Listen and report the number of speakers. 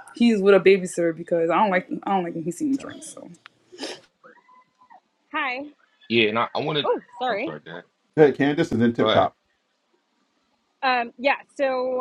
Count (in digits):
4